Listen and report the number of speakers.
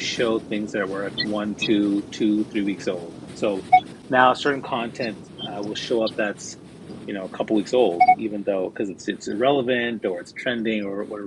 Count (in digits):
1